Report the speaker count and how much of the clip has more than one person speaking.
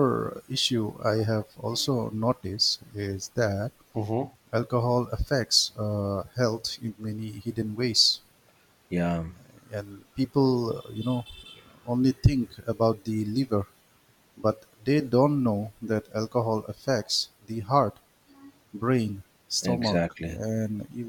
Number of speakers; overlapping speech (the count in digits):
2, about 4%